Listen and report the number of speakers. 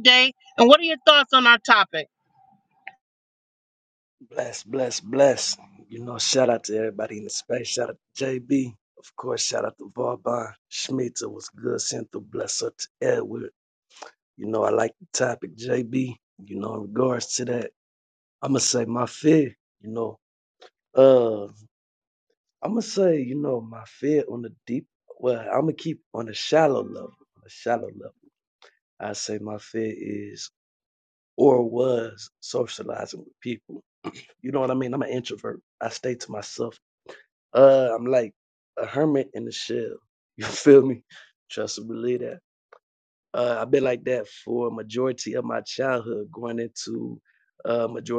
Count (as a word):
two